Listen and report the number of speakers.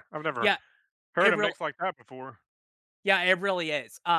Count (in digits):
2